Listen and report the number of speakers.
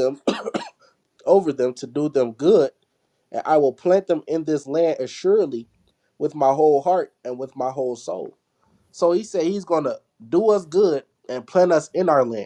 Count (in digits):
1